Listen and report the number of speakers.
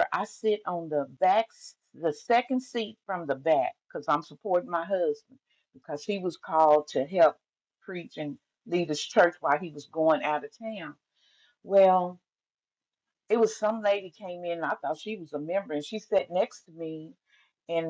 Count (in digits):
1